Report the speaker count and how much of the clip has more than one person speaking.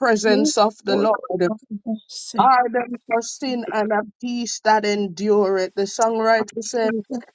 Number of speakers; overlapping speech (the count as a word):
two, about 9%